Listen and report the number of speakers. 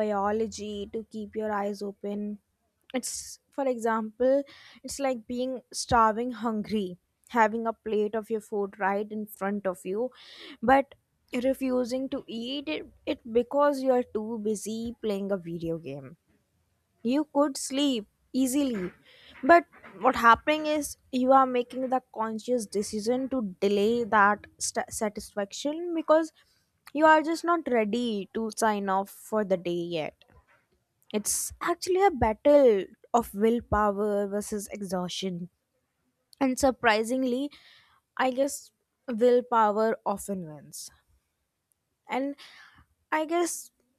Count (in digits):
1